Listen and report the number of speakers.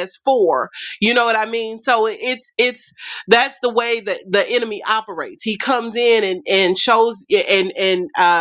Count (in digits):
1